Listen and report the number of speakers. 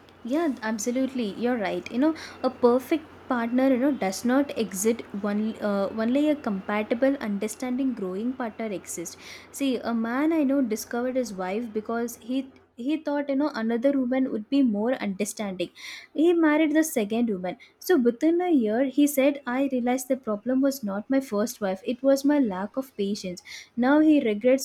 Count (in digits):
1